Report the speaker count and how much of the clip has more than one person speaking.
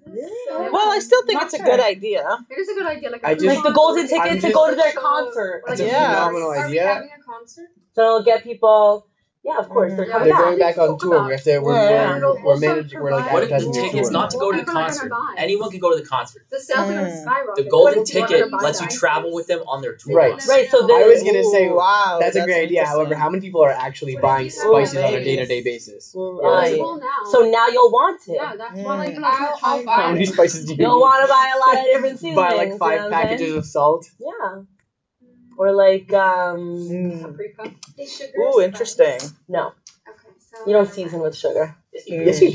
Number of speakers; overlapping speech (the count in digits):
6, about 57%